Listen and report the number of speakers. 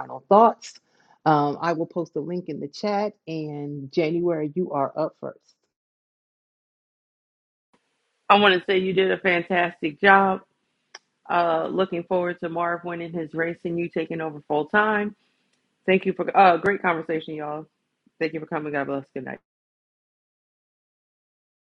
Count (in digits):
2